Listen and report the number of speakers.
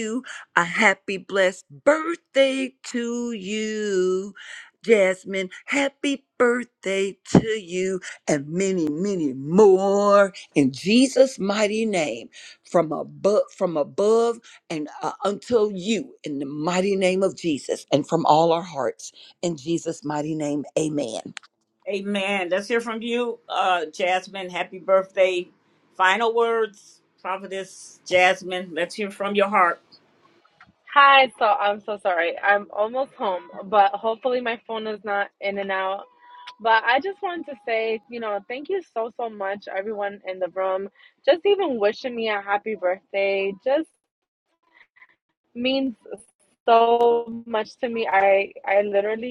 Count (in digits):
3